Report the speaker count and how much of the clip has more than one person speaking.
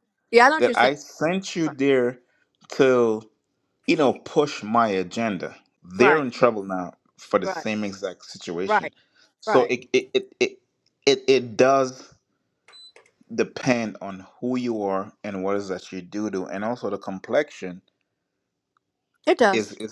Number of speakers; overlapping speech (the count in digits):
2, about 6%